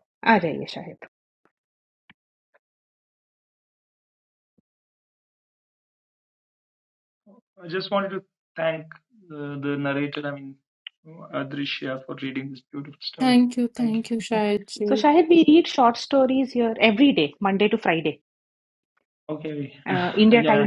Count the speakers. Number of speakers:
3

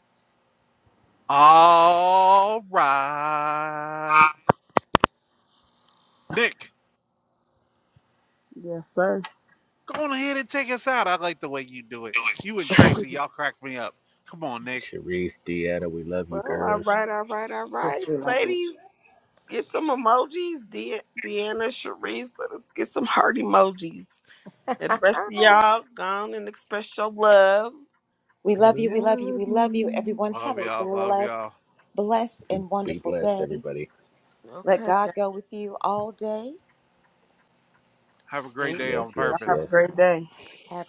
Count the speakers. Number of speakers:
4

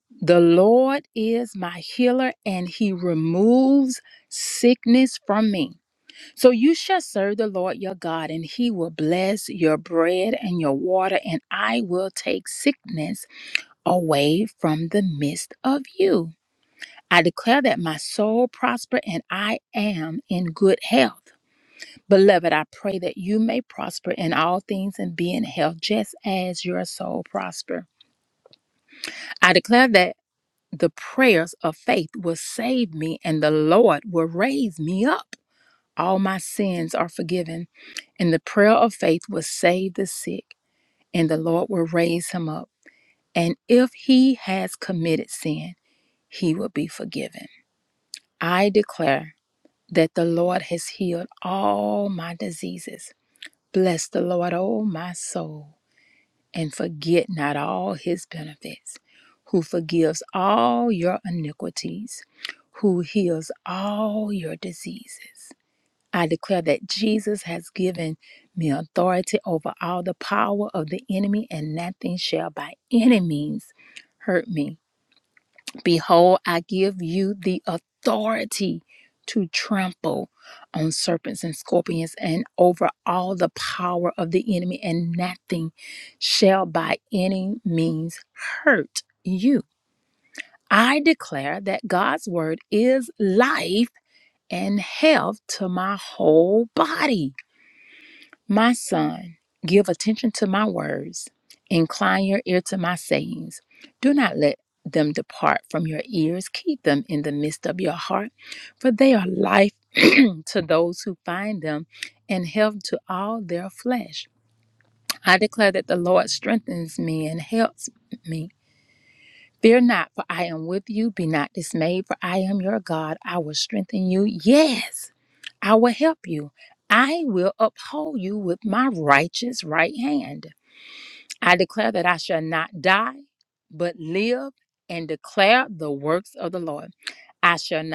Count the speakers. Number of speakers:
1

